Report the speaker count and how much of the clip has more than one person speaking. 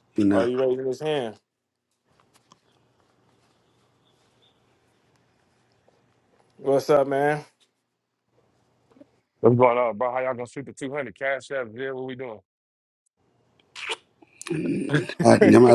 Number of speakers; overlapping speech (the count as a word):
three, about 1%